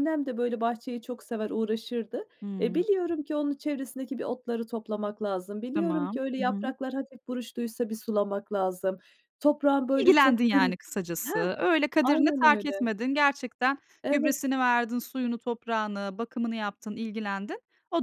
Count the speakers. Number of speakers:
2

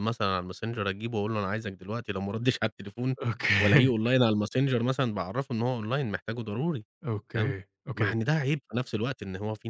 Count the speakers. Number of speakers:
2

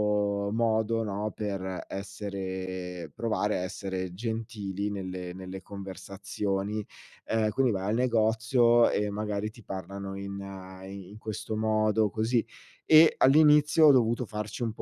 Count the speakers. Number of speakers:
1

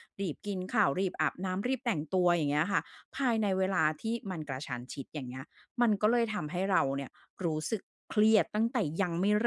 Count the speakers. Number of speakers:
1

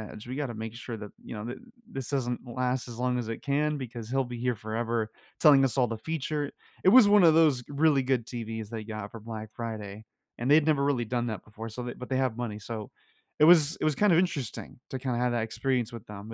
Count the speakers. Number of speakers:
1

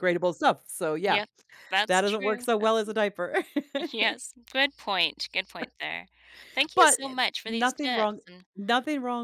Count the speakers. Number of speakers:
2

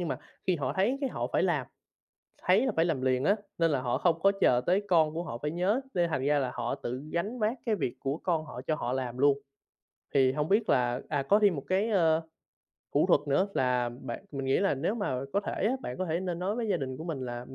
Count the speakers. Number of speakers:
1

